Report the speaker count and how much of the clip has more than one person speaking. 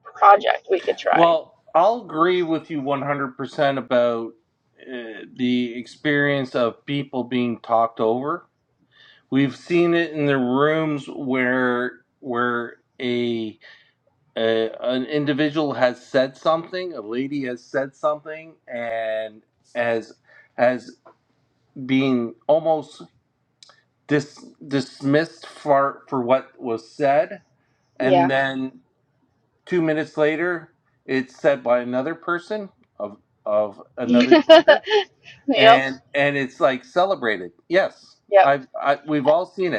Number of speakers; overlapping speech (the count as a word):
two, about 3%